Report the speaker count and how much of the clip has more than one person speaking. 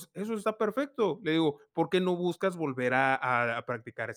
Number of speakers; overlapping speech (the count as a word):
one, no overlap